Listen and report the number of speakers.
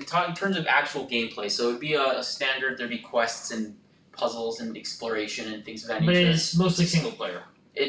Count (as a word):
two